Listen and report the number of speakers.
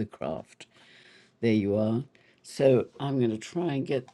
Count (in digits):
1